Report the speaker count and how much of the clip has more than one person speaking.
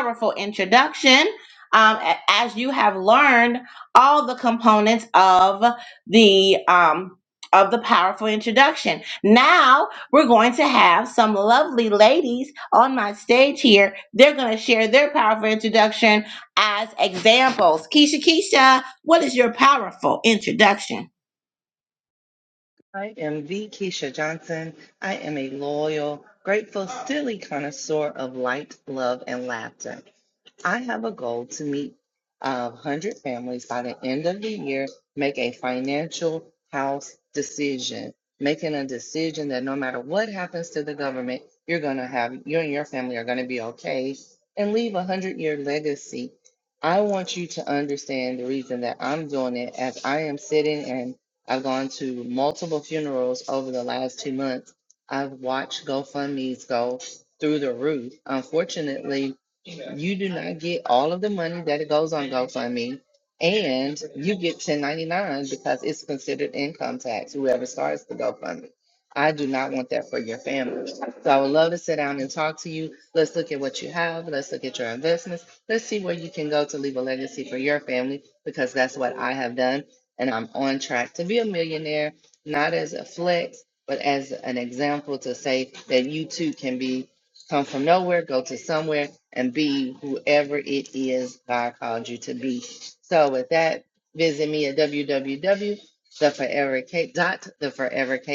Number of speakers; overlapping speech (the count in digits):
2, no overlap